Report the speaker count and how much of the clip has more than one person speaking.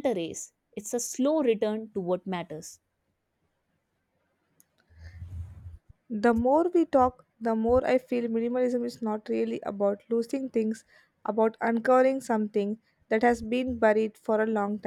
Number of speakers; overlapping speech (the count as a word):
two, no overlap